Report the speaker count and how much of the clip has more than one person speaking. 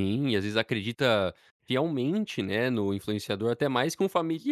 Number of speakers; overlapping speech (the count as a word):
one, no overlap